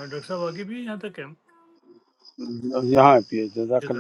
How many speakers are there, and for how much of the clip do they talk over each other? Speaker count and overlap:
two, about 5%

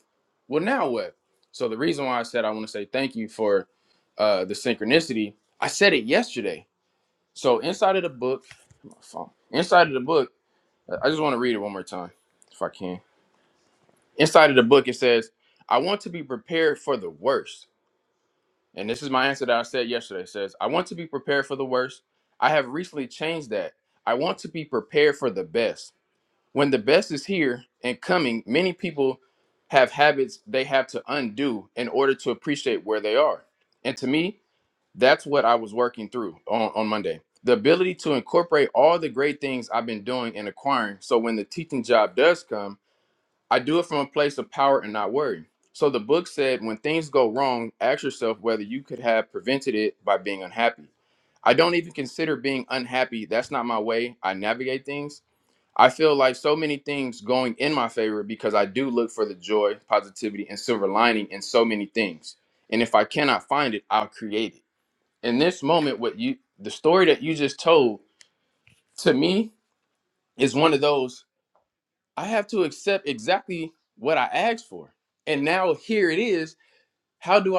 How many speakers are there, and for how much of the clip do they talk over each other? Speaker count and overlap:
one, no overlap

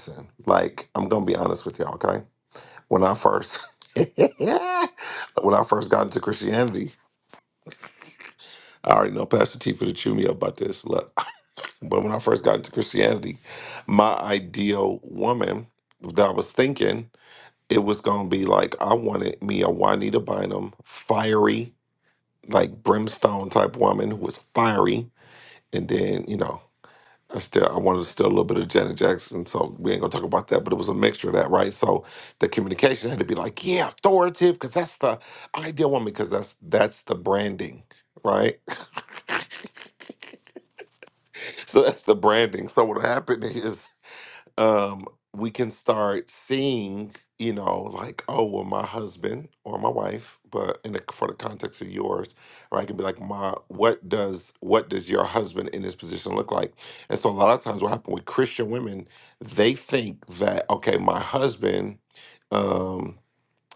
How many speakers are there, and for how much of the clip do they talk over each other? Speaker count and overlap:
one, no overlap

